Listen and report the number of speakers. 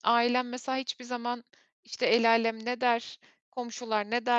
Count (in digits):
1